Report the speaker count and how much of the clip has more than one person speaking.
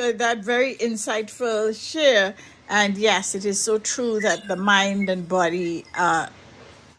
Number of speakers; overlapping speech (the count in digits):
1, no overlap